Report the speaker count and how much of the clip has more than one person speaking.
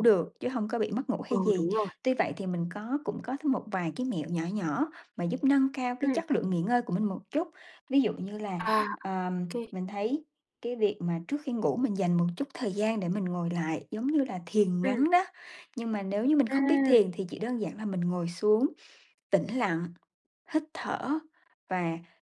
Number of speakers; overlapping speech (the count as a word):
two, about 8%